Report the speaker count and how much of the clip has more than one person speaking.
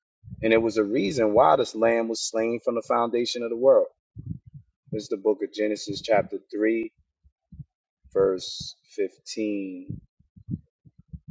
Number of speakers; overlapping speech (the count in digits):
1, no overlap